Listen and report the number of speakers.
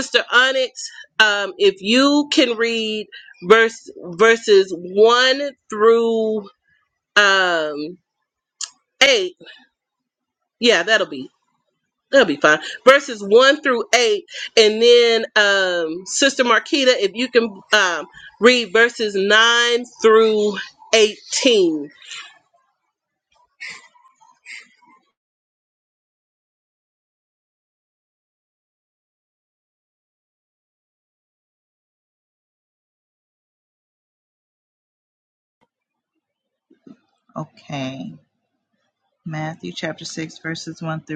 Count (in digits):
2